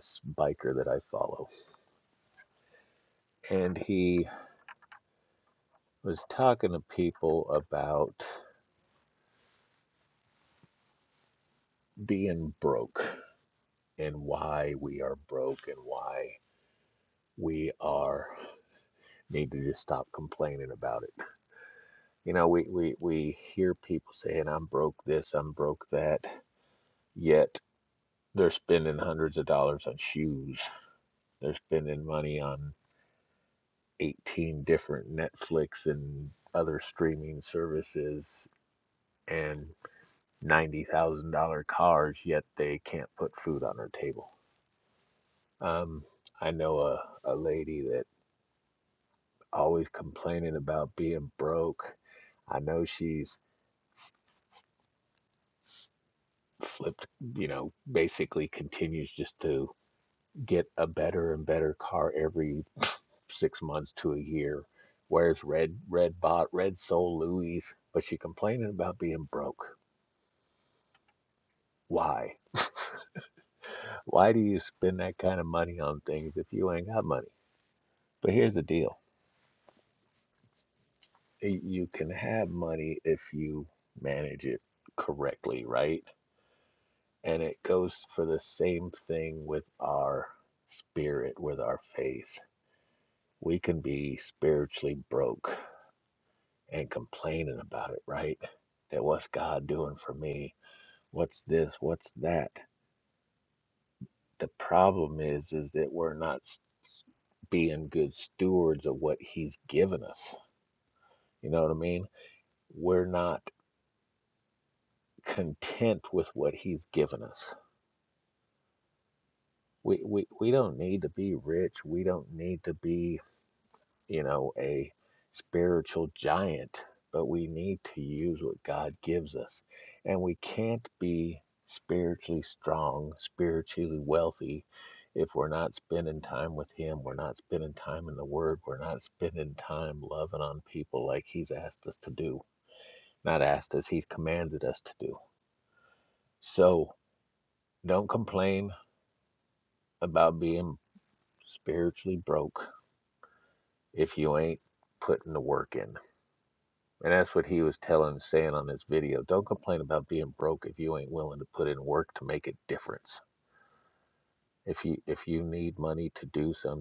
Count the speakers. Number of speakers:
1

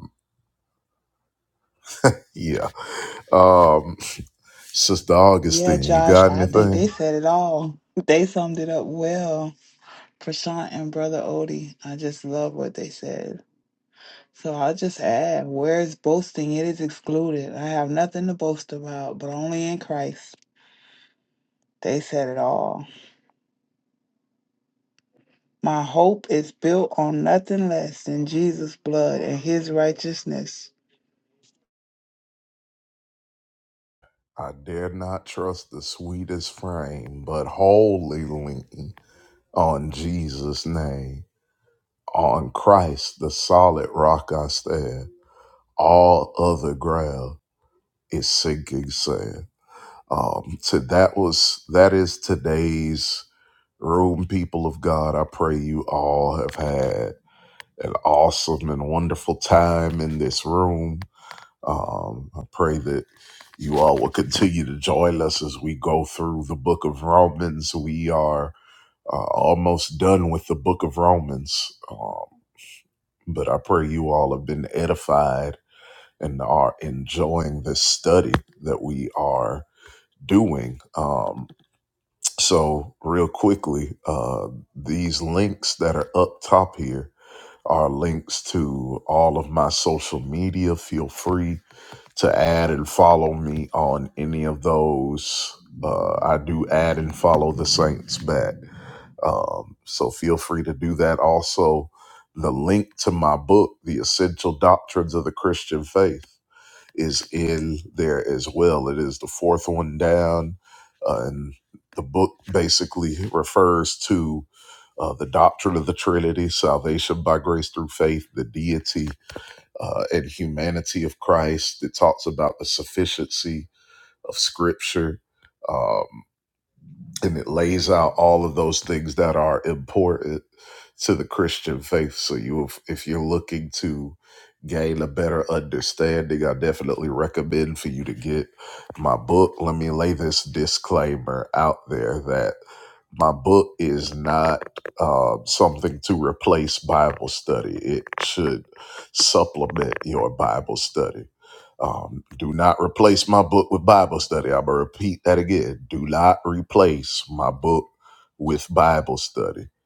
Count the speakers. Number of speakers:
2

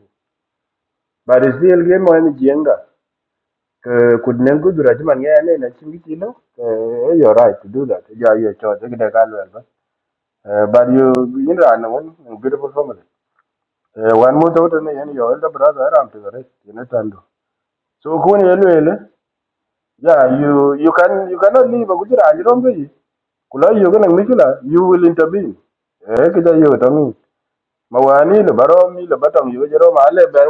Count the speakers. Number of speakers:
1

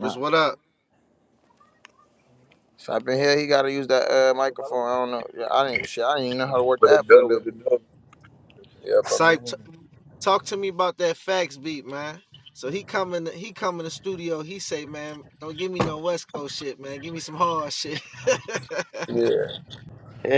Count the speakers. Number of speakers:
3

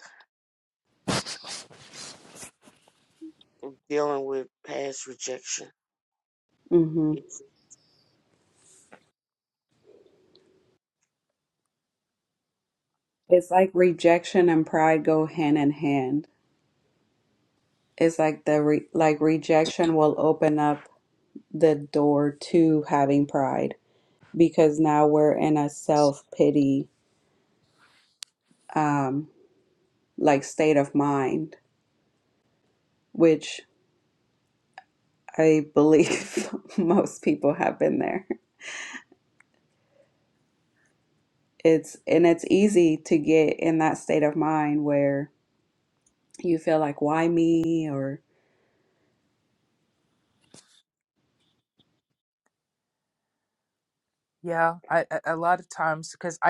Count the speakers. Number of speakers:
3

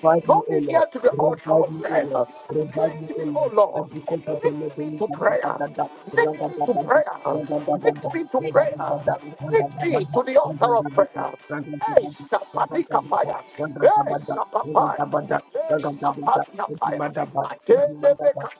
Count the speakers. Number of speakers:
2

